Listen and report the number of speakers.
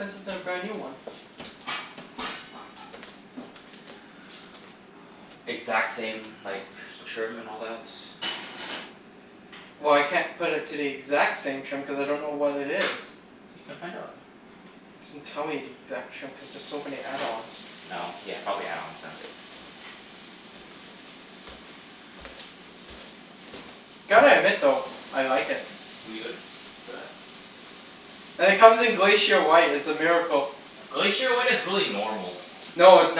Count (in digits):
2